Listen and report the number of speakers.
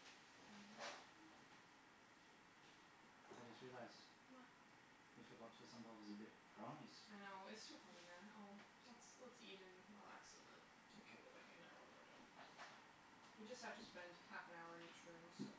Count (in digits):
2